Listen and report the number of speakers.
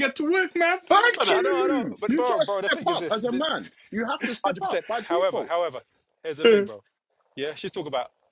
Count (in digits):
3